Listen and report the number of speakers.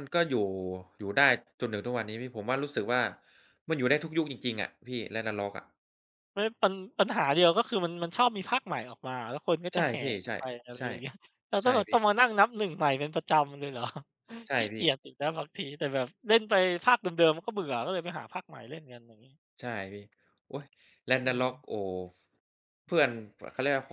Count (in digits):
2